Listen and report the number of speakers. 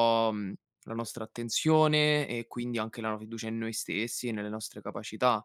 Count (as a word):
one